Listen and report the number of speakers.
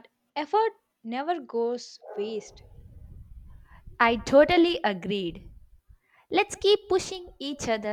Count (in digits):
2